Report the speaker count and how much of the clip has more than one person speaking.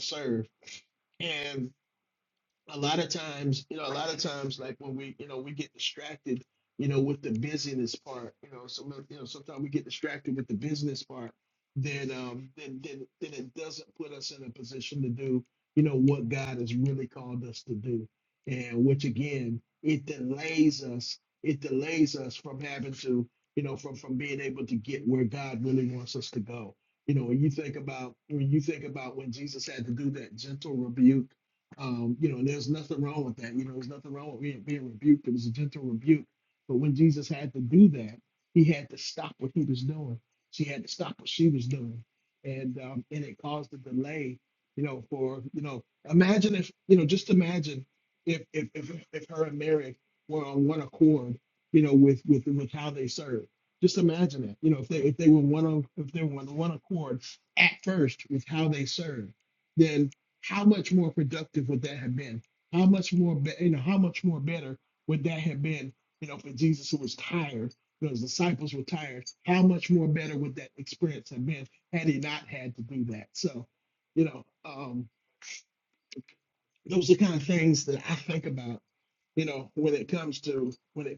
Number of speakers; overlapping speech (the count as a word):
one, no overlap